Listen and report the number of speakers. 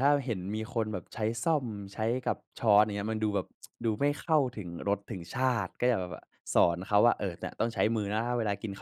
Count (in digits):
1